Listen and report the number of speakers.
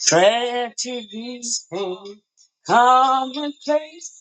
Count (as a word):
one